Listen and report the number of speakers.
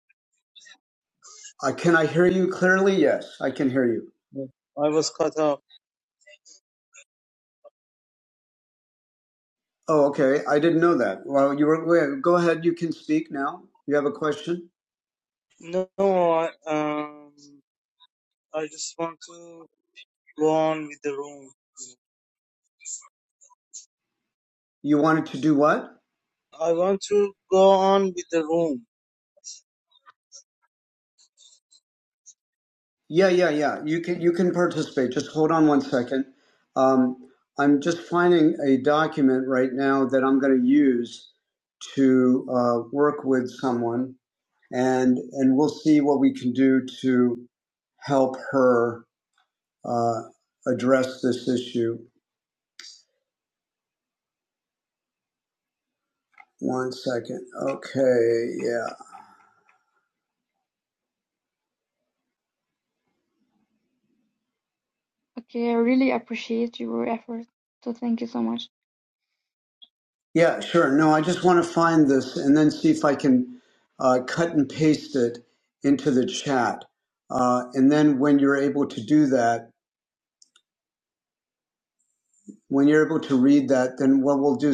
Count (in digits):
3